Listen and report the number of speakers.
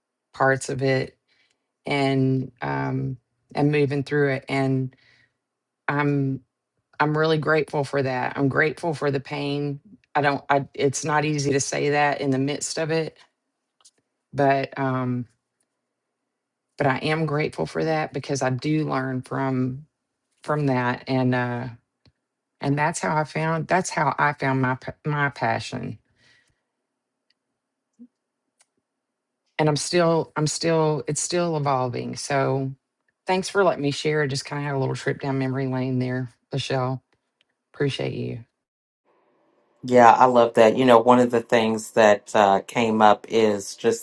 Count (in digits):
2